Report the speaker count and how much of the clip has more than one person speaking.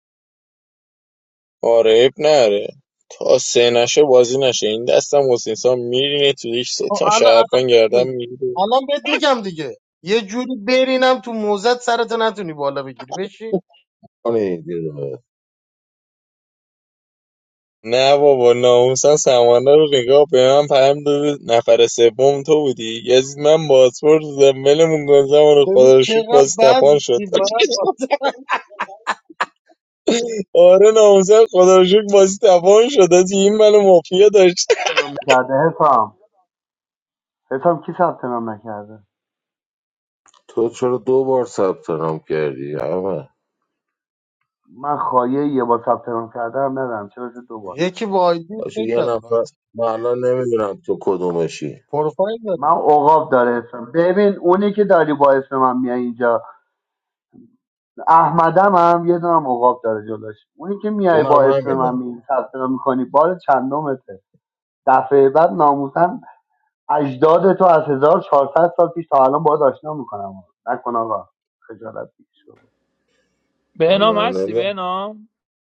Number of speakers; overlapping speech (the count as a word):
five, about 7%